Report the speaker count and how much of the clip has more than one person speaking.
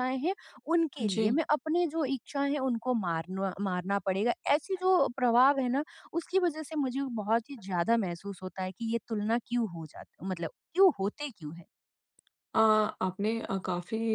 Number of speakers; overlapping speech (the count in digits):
2, about 2%